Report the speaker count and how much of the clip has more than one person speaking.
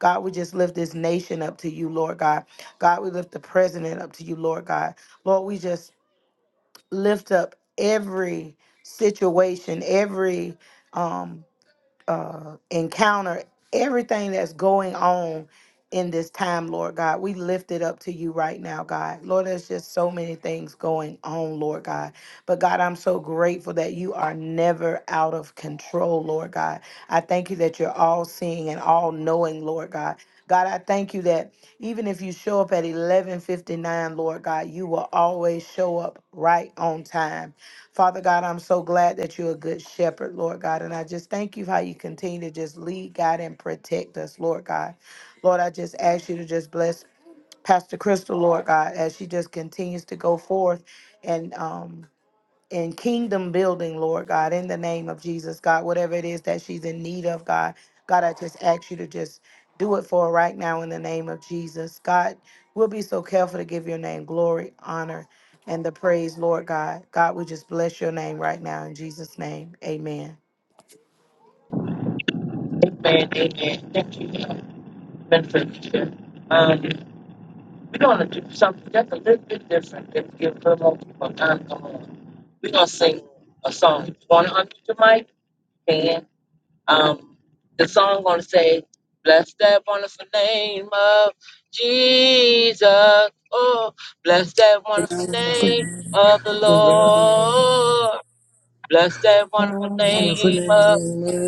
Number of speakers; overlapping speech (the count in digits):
3, about 2%